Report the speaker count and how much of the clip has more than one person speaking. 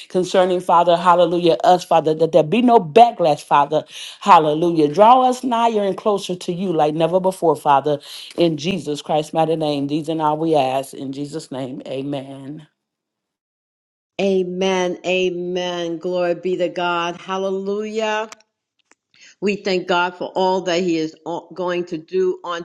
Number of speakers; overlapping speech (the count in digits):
2, no overlap